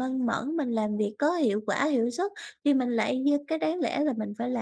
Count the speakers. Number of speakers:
1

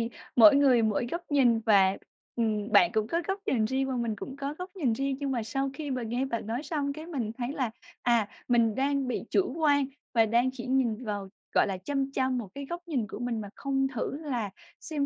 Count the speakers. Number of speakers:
1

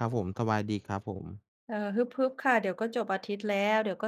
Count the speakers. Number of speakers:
2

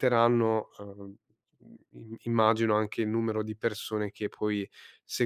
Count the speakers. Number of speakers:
1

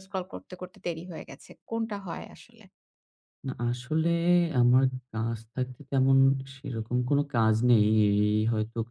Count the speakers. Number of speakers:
2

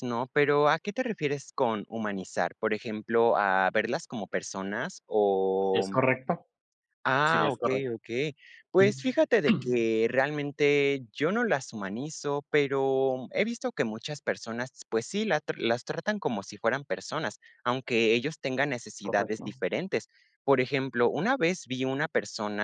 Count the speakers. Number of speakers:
2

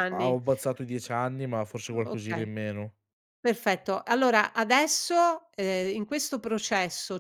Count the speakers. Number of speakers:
2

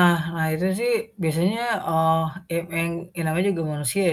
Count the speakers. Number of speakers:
1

